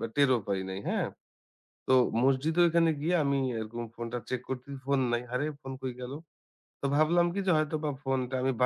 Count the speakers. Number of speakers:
one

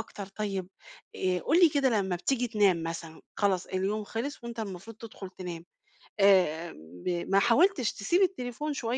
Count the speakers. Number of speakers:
one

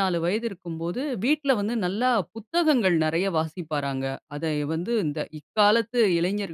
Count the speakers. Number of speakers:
one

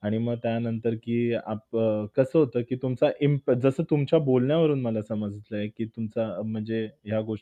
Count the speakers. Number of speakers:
one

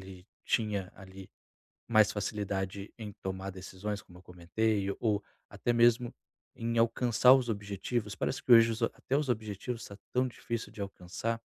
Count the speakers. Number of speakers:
one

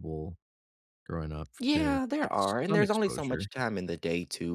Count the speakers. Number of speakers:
two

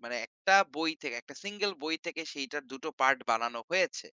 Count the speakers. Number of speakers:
one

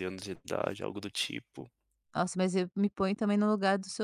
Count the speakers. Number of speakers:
two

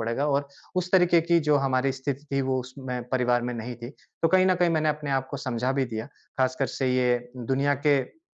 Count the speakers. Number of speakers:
one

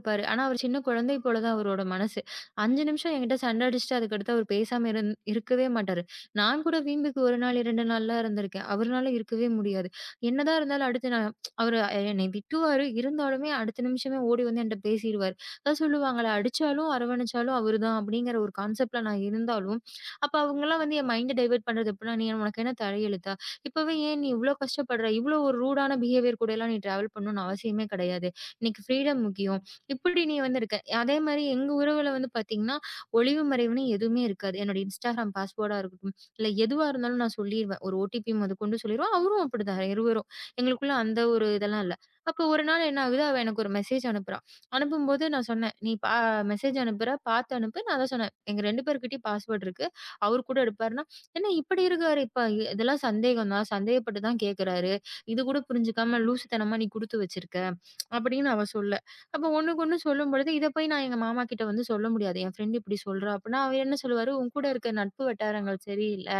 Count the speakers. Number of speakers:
one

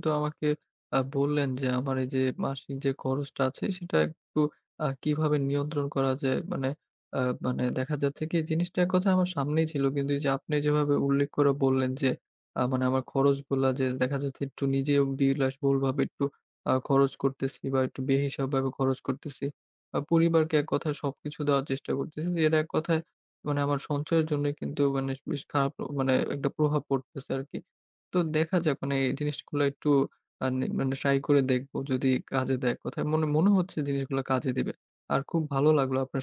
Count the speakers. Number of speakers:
one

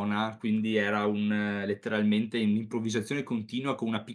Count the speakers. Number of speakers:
one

